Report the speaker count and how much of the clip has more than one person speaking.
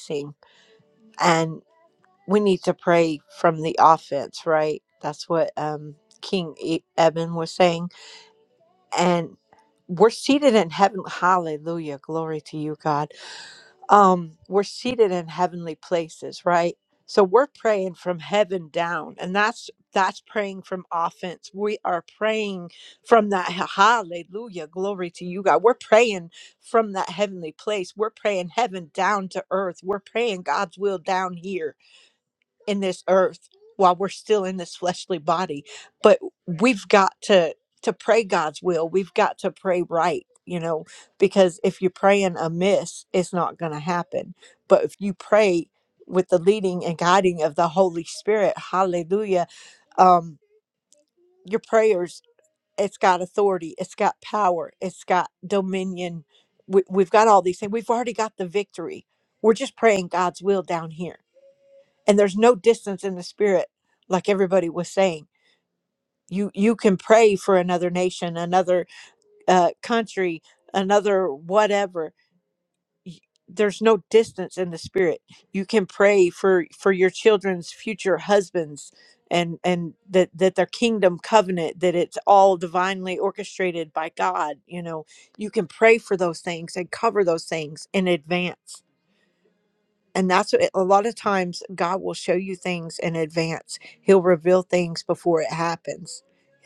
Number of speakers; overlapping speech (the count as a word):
one, no overlap